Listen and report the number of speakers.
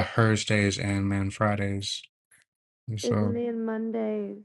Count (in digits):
2